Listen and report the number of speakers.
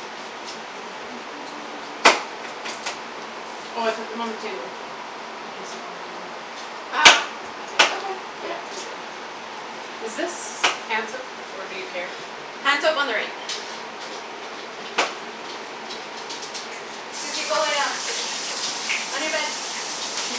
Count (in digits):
2